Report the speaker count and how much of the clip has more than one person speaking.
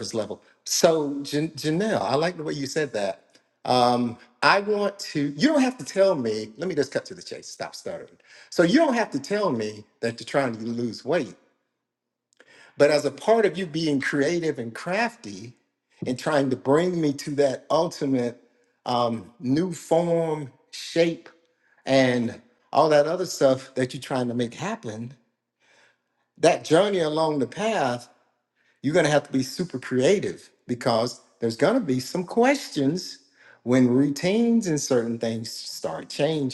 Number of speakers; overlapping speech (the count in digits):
1, no overlap